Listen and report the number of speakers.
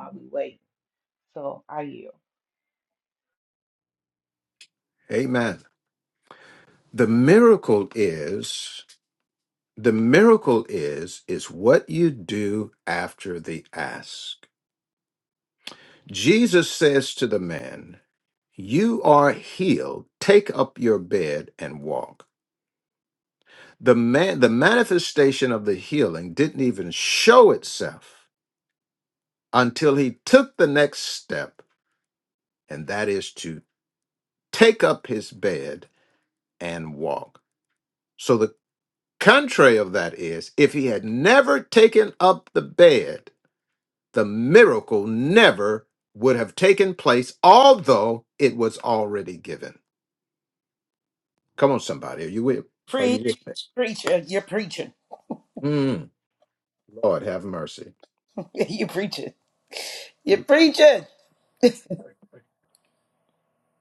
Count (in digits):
3